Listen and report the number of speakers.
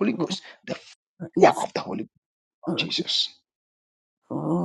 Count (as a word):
two